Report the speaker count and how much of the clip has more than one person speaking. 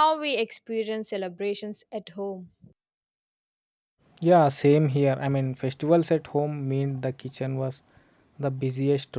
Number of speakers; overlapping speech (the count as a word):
two, no overlap